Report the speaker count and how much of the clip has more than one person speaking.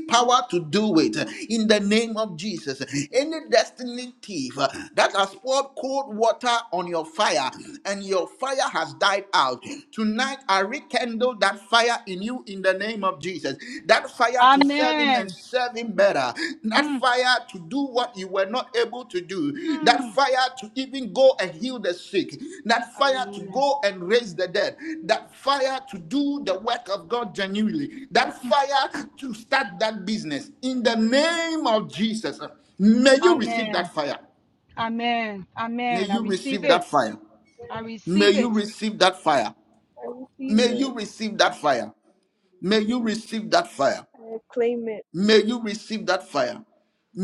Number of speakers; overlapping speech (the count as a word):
three, about 10%